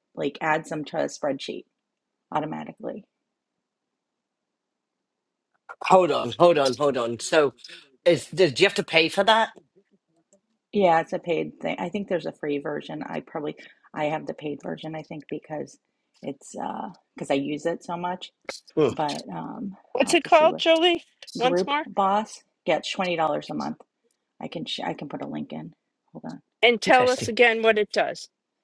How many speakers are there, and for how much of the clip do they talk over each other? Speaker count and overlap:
3, about 6%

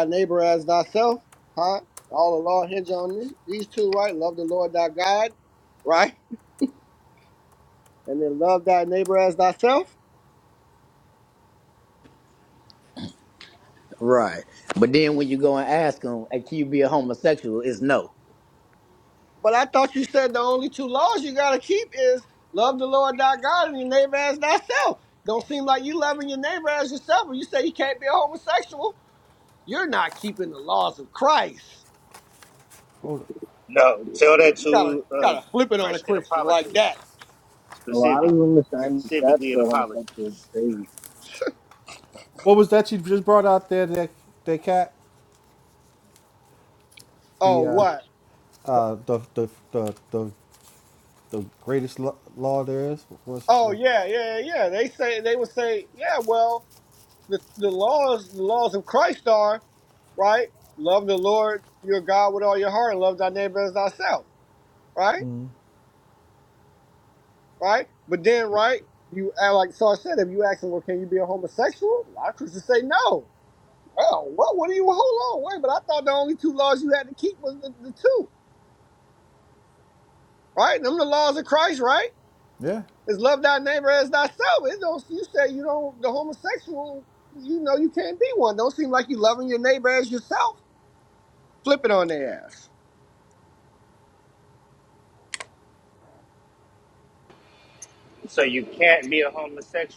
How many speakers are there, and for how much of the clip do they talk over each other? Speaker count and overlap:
5, about 4%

